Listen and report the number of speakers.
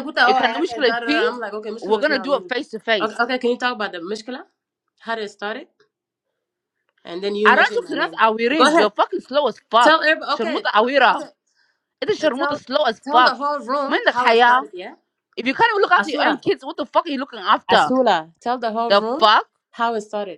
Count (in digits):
2